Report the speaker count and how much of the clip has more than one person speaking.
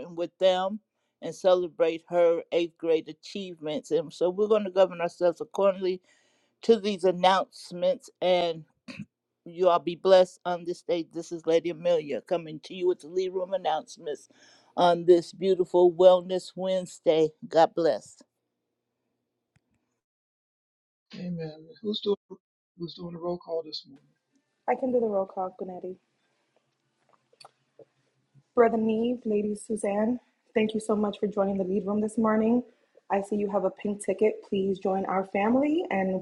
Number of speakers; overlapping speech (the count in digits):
3, no overlap